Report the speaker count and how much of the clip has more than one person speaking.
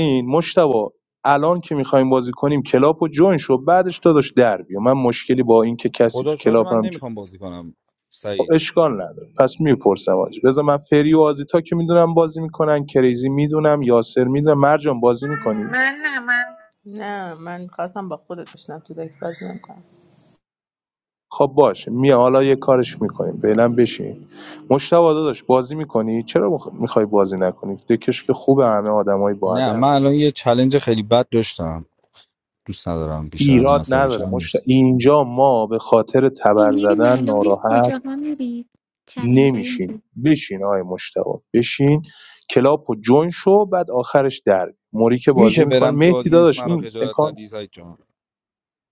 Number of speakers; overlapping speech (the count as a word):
five, about 13%